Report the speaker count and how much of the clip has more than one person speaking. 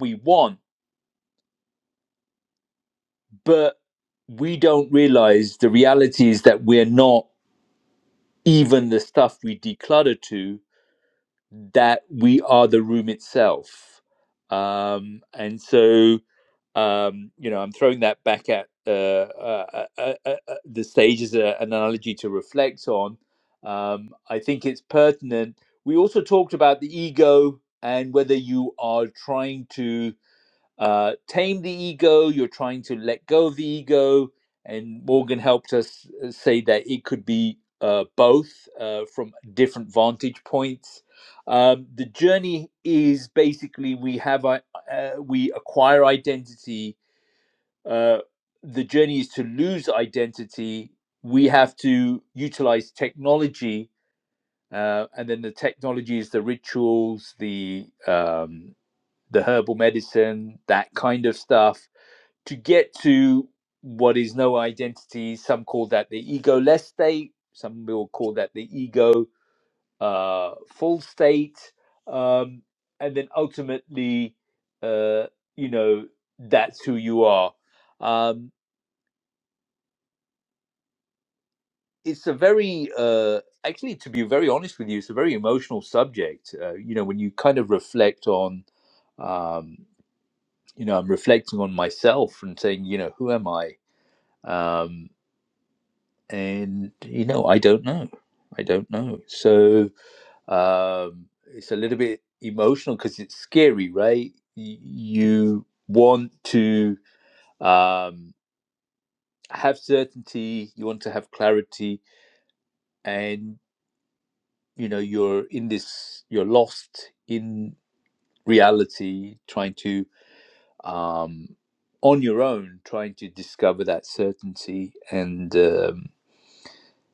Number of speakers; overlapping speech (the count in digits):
1, no overlap